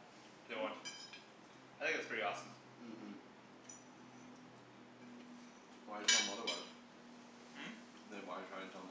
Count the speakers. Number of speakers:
2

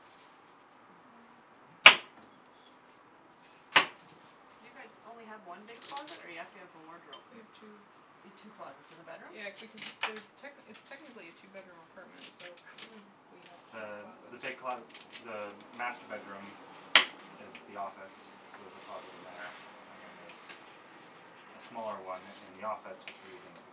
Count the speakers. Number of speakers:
3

